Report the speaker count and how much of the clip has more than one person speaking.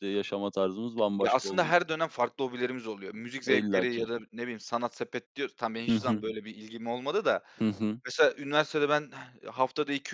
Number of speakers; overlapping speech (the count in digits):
2, about 15%